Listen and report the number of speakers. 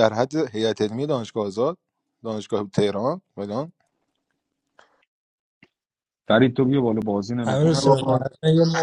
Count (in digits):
3